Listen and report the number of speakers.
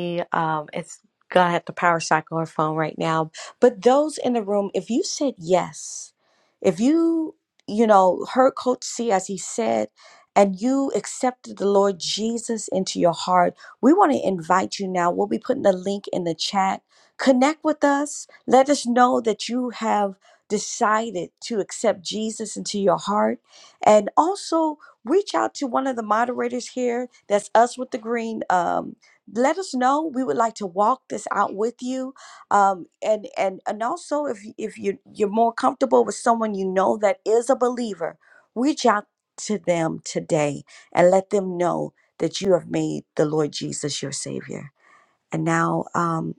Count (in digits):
1